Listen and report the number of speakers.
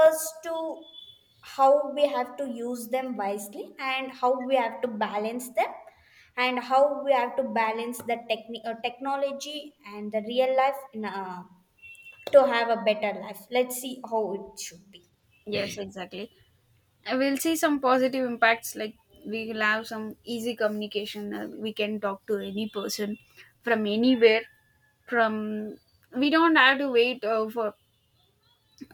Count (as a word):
two